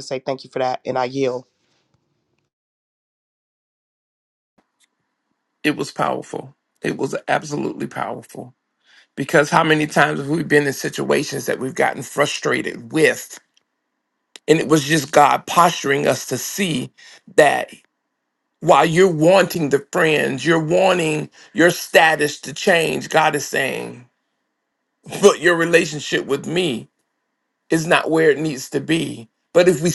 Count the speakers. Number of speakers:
2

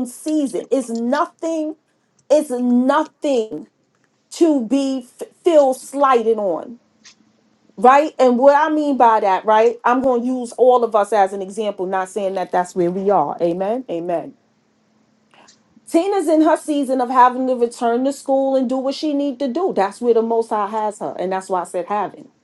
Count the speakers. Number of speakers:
1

